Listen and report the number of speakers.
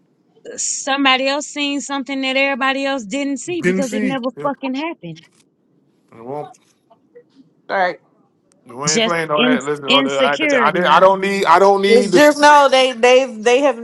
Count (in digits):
3